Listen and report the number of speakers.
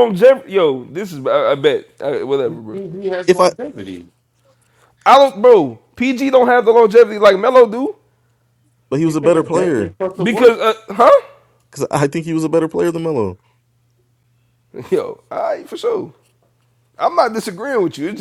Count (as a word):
three